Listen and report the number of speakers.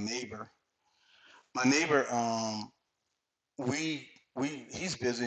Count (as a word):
one